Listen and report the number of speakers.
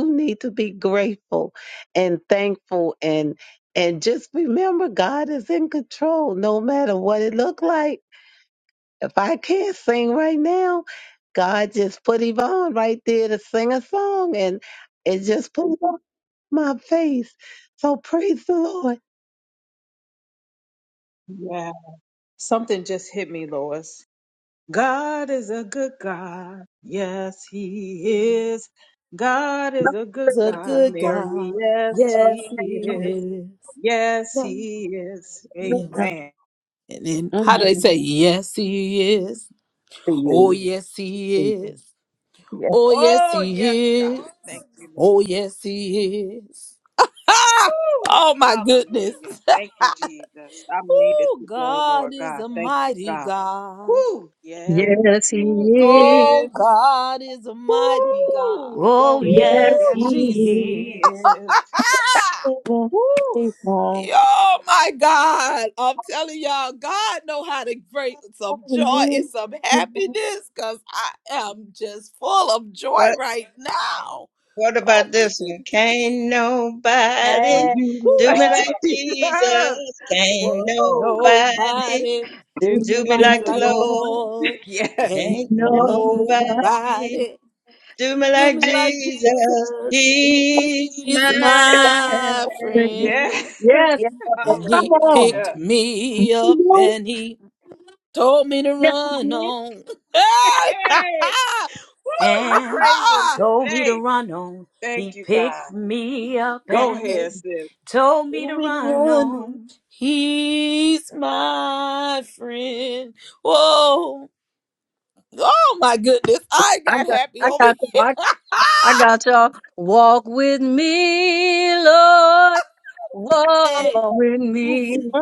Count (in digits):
6